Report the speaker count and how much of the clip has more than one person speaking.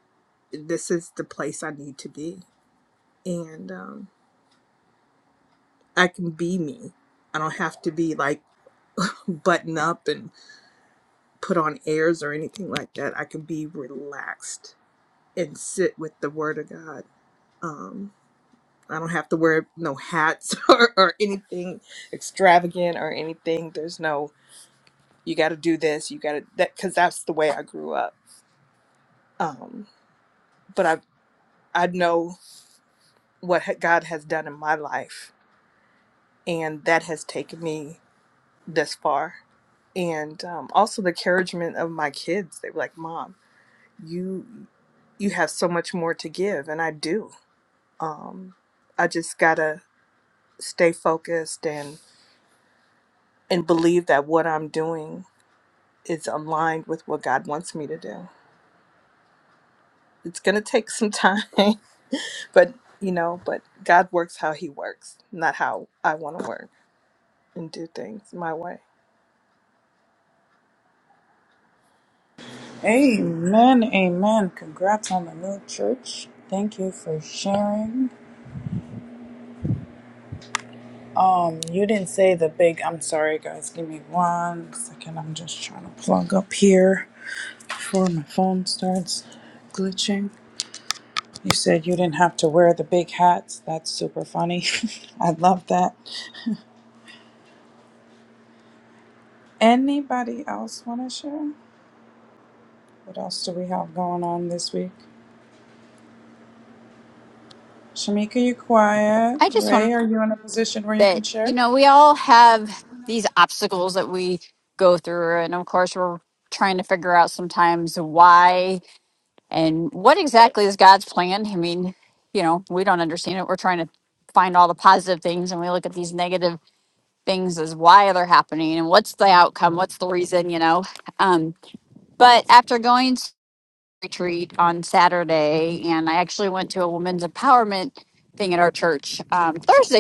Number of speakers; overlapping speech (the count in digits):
3, about 1%